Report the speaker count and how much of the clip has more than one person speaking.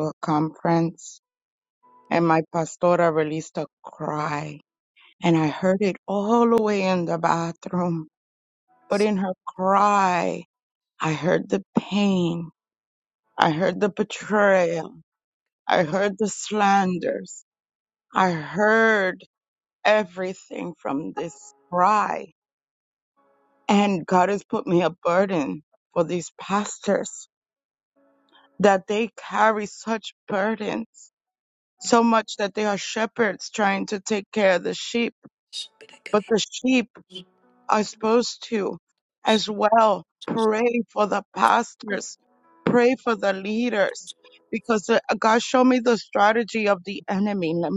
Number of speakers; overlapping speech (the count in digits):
1, no overlap